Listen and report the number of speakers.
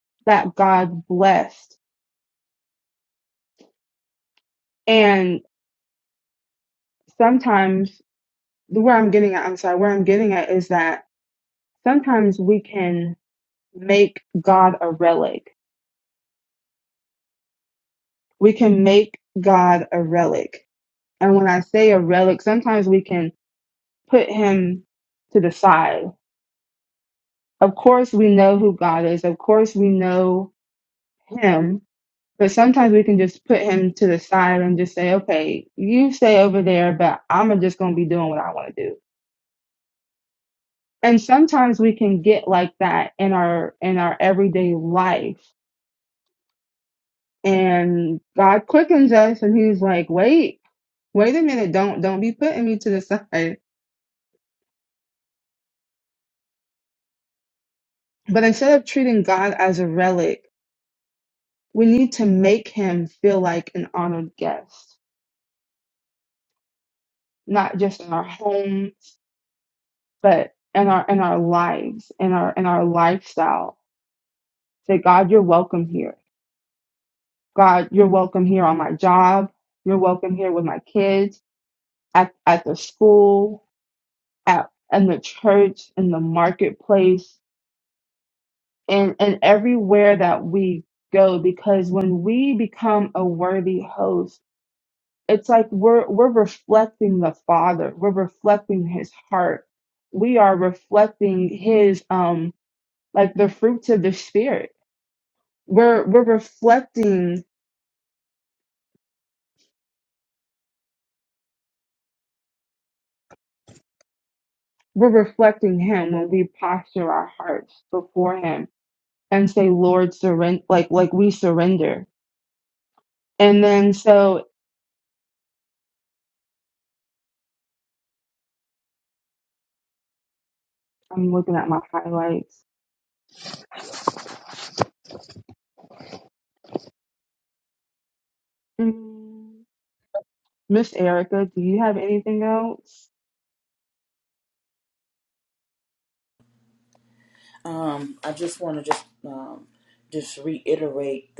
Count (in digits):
2